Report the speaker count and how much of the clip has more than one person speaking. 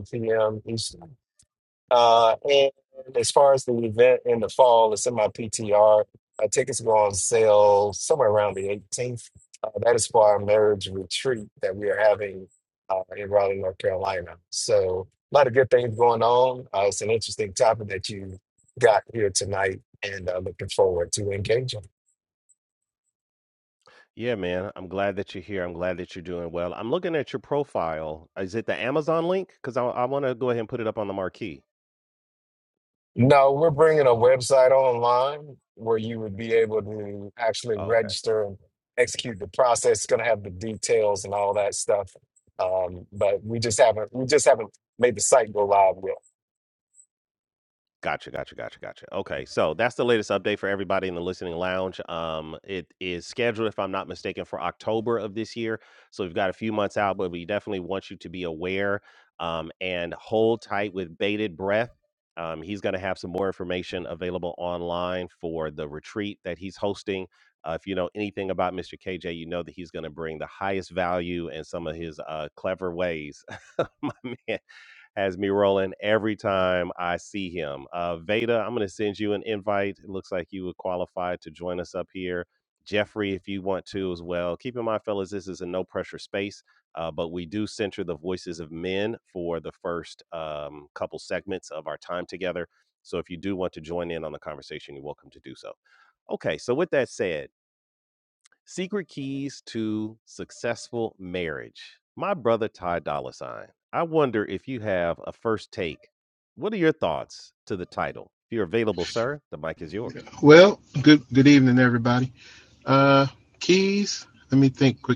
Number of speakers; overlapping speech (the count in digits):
3, under 1%